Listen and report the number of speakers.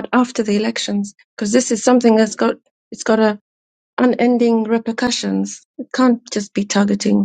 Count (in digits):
1